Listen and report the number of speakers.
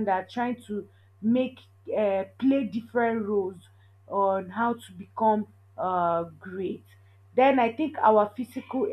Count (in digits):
1